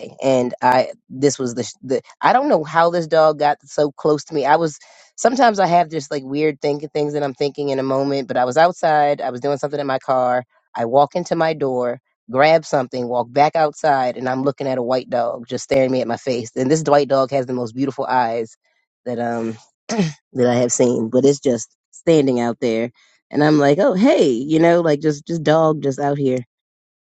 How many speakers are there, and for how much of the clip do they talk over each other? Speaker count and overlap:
one, no overlap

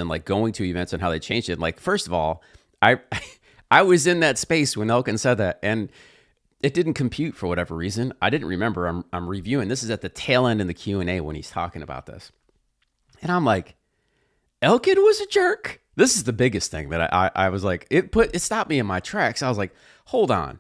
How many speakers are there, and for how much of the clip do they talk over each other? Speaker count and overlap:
one, no overlap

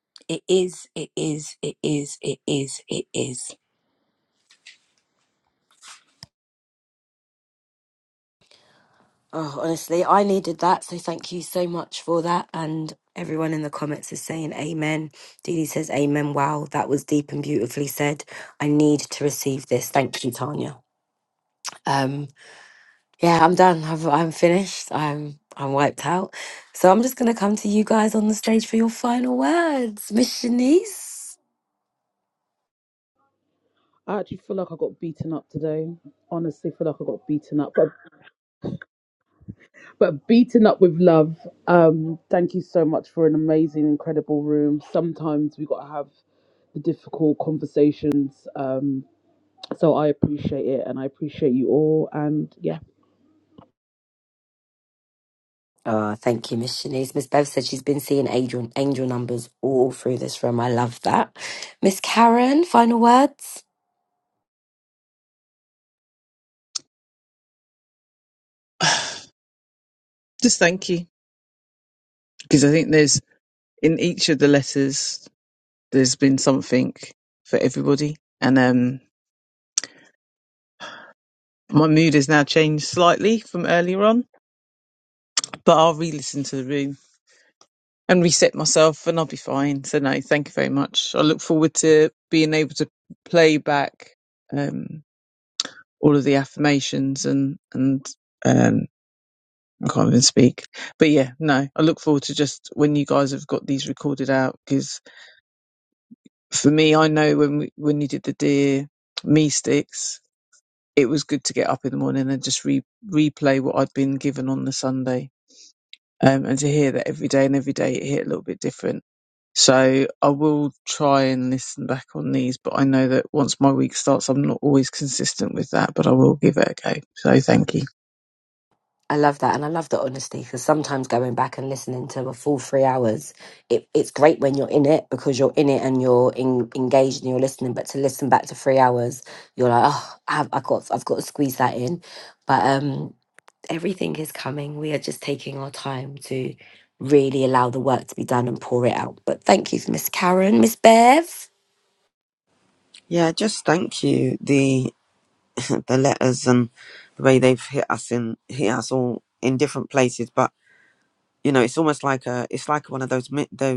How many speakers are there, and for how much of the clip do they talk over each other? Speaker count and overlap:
five, no overlap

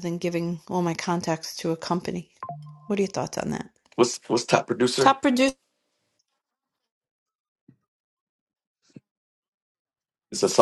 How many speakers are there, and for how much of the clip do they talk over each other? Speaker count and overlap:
two, about 1%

